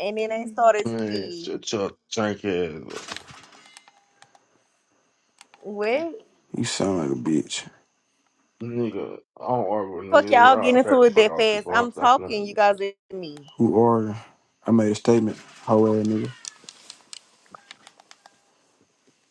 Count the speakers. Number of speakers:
3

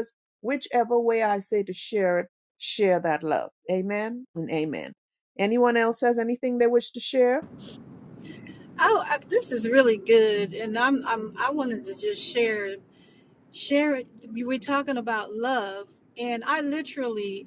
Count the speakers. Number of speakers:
2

